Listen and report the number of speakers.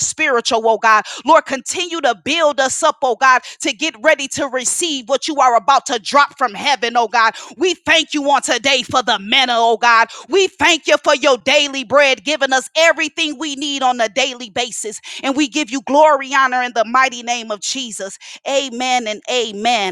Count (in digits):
1